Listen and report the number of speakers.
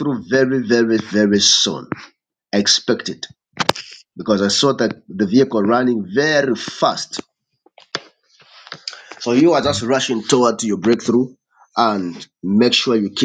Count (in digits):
1